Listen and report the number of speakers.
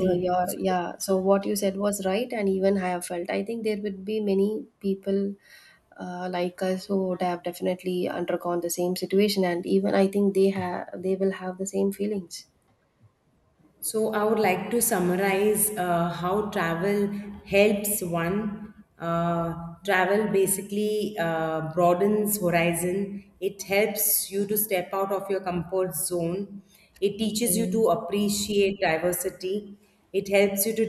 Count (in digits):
2